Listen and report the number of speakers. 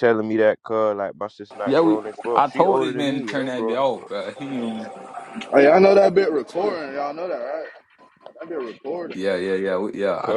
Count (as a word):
three